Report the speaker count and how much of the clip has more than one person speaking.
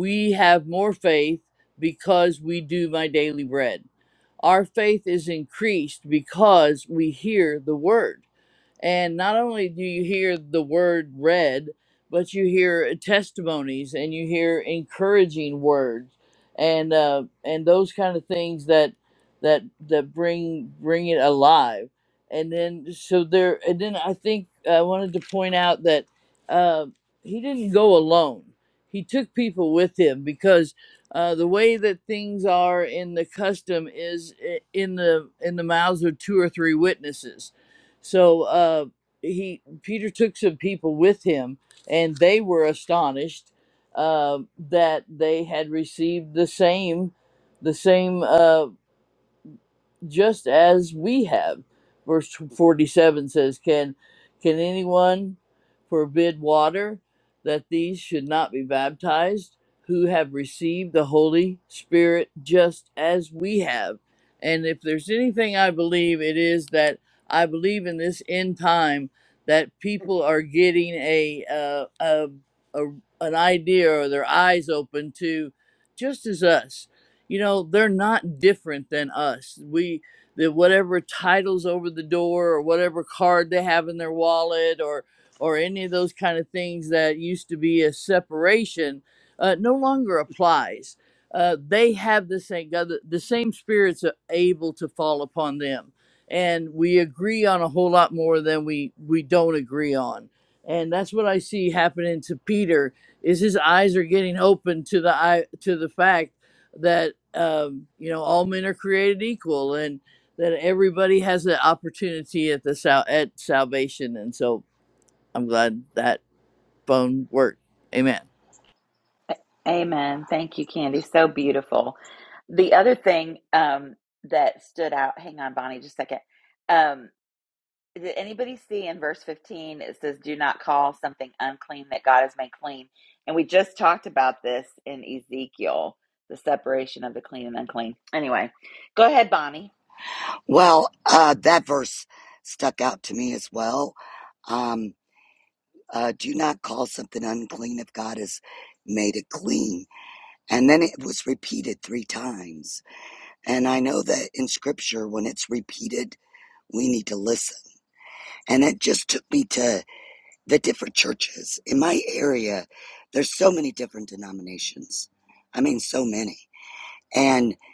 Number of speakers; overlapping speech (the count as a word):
three, no overlap